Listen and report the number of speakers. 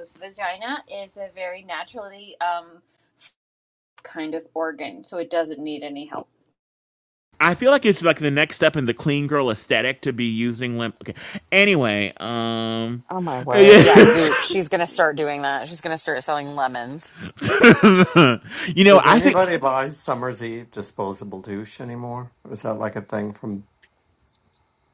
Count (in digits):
4